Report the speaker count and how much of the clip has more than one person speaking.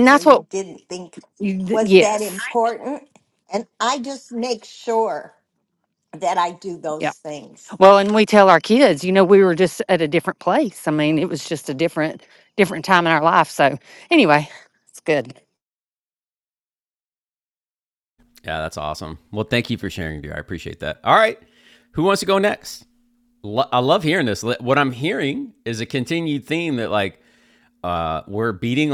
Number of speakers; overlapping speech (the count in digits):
3, about 4%